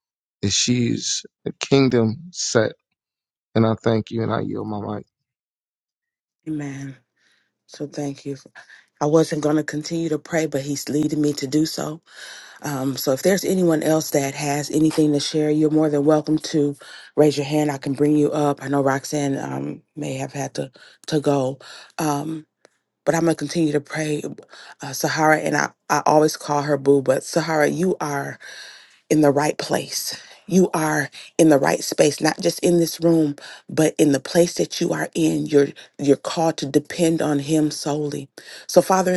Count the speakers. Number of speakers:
two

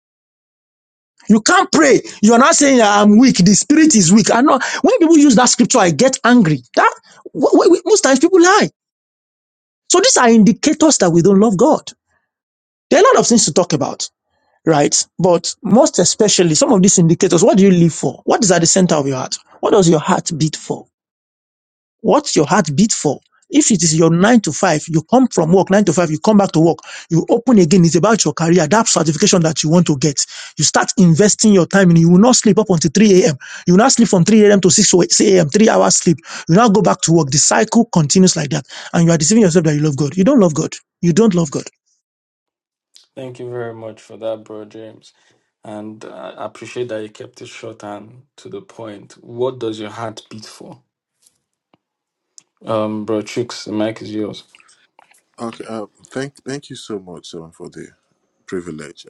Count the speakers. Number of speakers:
three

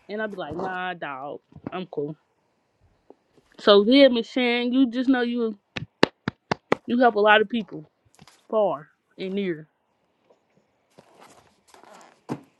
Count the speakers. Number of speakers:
one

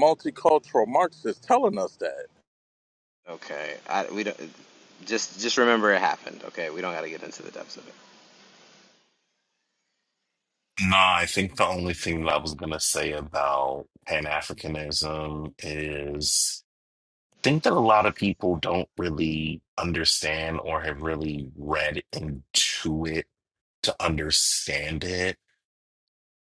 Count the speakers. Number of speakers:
three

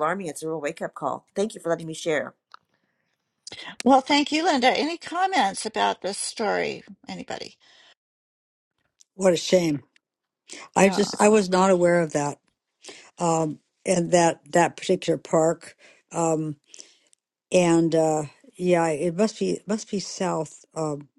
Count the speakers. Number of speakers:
three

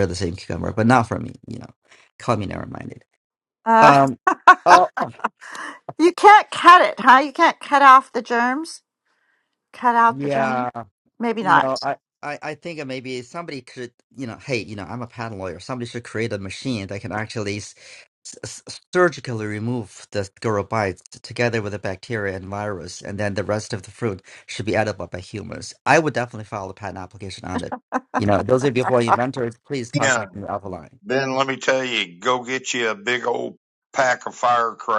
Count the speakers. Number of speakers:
three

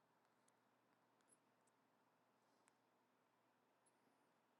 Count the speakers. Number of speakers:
zero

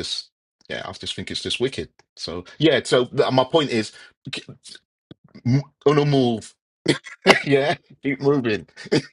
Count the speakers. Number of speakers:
one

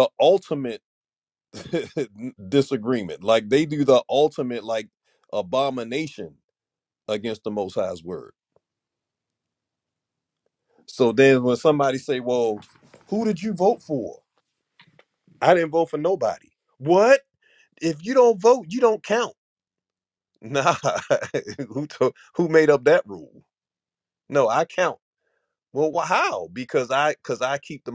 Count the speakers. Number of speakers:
one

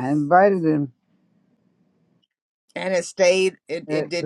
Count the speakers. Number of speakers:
two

